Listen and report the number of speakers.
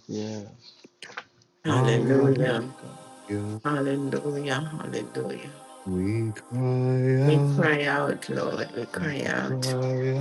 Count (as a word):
three